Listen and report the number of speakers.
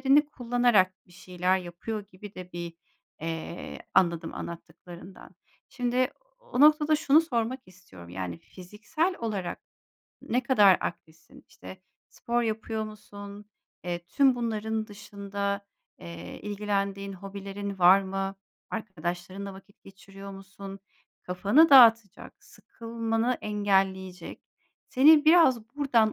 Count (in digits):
1